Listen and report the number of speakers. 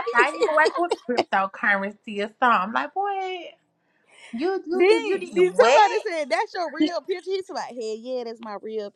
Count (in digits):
2